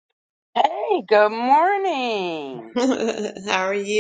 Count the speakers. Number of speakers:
2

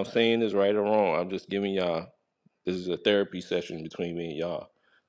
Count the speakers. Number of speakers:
1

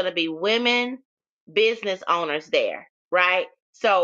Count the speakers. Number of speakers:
1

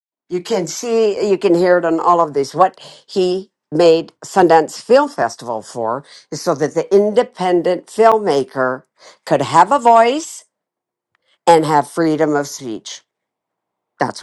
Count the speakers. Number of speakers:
1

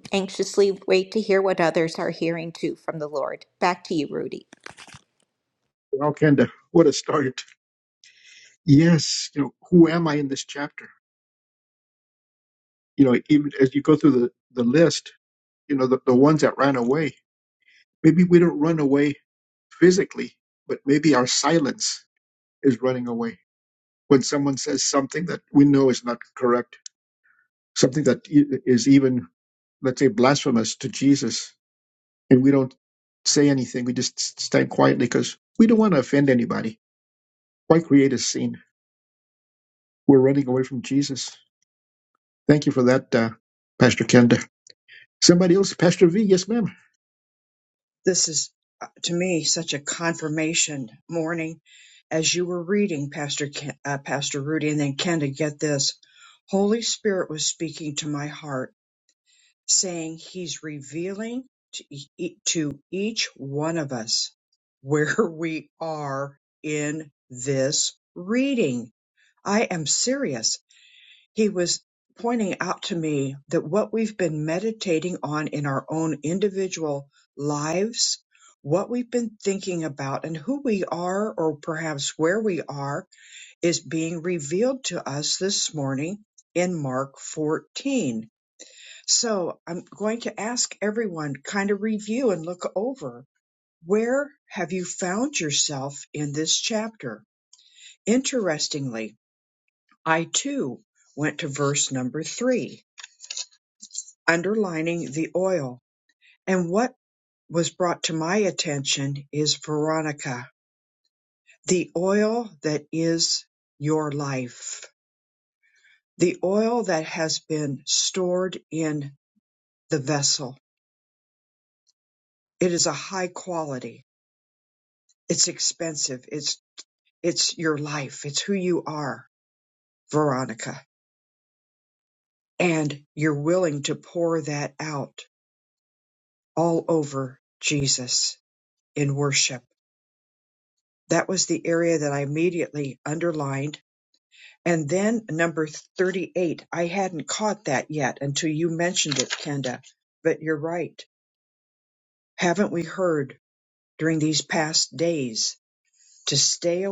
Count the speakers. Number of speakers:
3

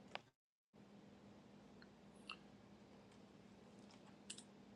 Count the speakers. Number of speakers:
0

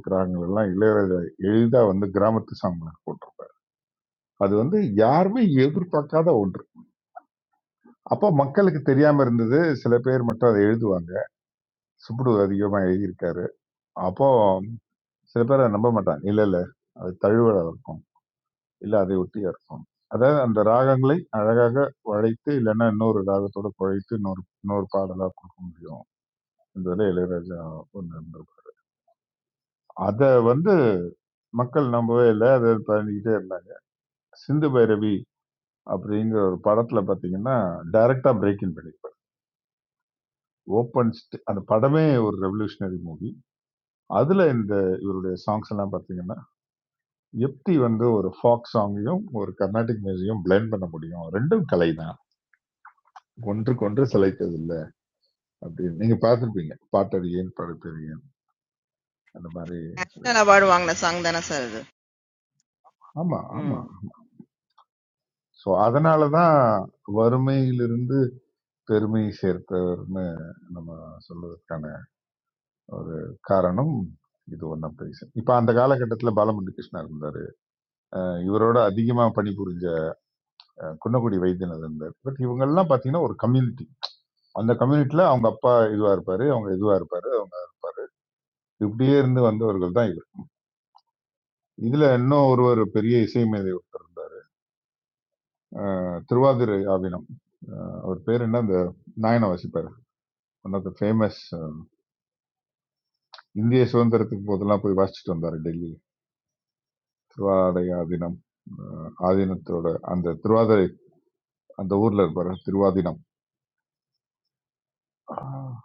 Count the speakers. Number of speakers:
2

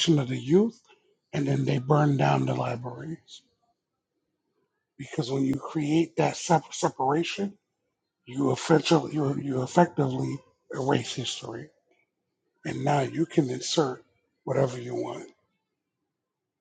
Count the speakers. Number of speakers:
1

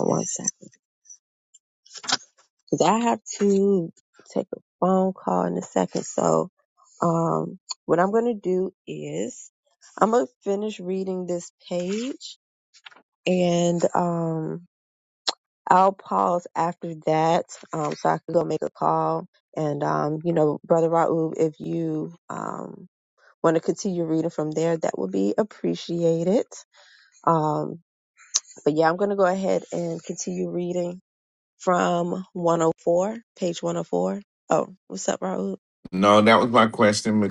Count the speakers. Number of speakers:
2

